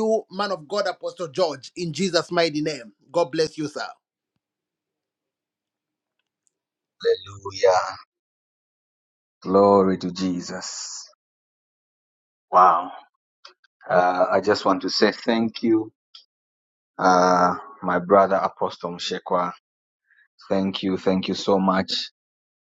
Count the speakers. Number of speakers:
2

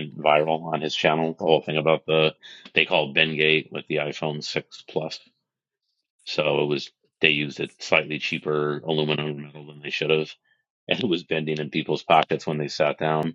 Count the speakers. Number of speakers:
1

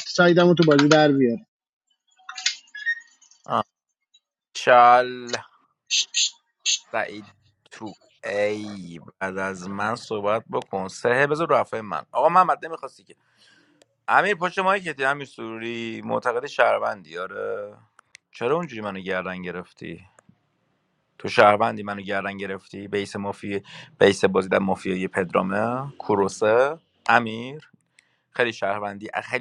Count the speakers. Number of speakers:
2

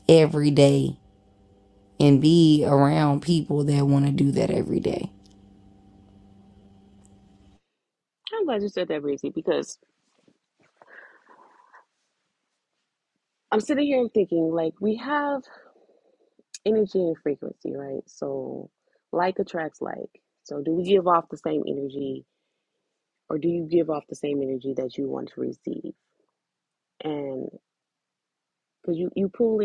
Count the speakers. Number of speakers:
2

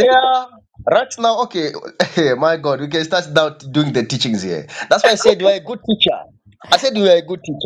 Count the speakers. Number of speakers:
1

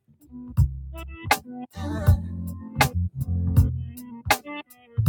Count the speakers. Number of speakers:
0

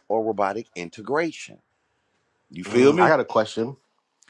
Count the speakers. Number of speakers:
2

